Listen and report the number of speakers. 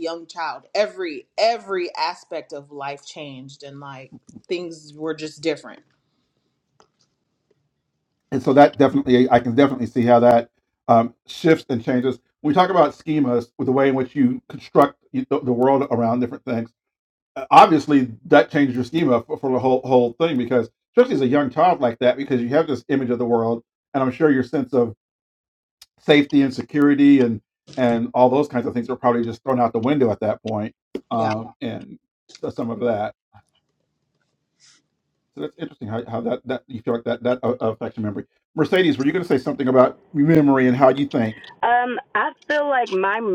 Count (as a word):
three